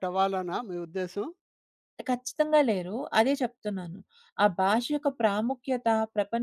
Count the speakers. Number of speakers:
2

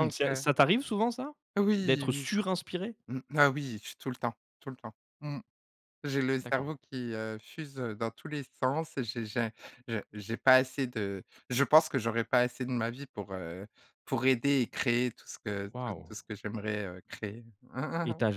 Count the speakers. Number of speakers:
2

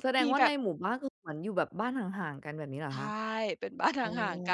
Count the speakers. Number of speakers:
2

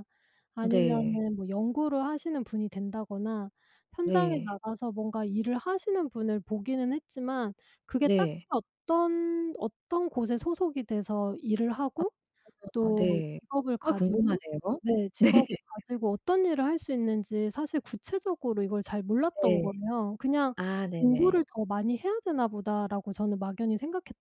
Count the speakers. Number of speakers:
2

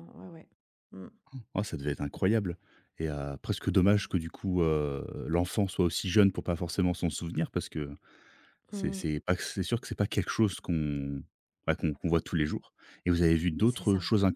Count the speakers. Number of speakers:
2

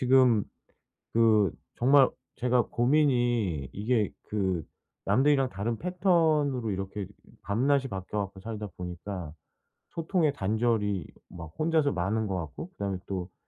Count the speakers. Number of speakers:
1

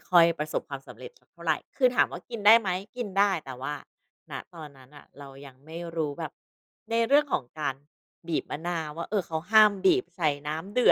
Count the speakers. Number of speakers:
1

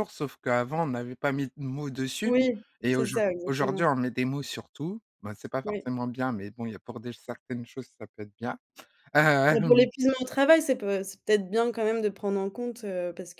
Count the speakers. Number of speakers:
2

